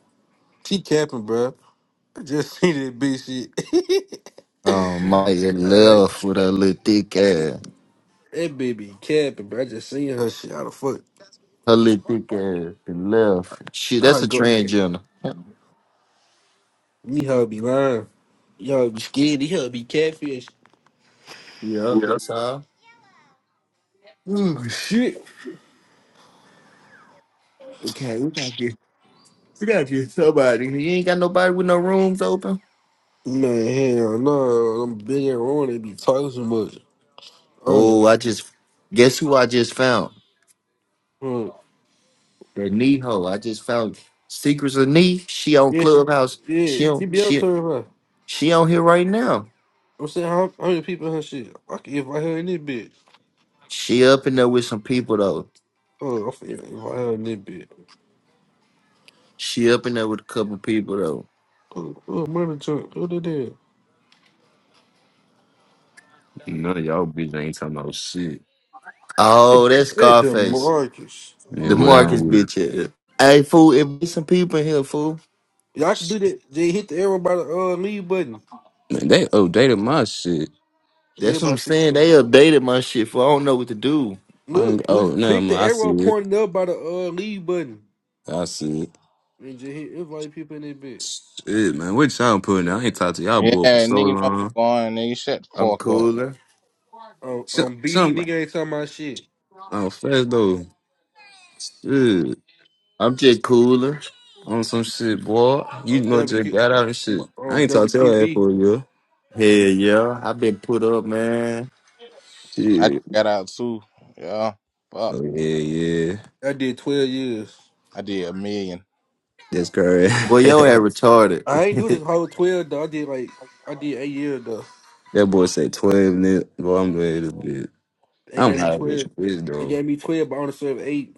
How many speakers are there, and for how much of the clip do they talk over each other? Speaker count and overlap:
4, about 10%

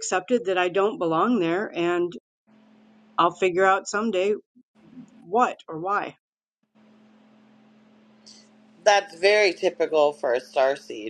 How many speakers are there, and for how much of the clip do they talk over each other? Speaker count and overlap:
2, no overlap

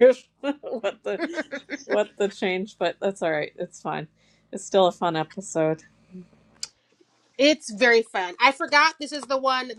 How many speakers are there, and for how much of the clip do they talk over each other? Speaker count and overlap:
2, no overlap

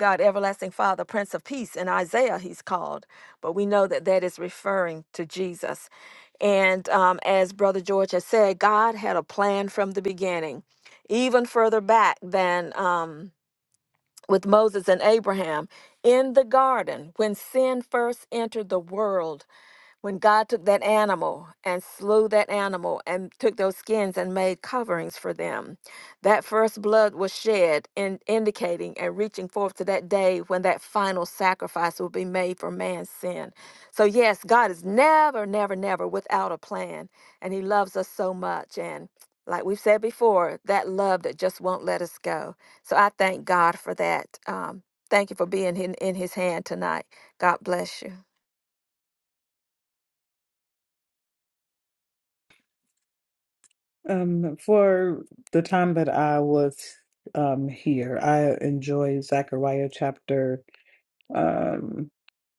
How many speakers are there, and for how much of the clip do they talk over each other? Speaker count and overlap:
2, no overlap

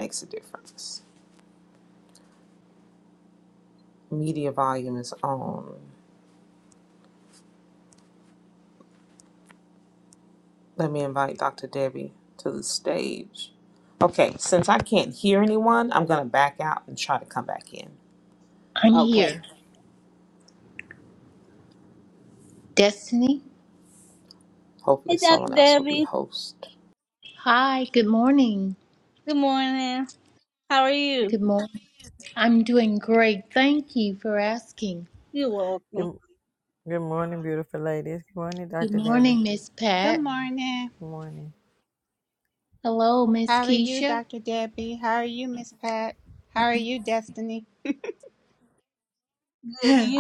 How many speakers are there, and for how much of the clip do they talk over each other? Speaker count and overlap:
5, about 7%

